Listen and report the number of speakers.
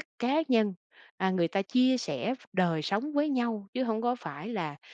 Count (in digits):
1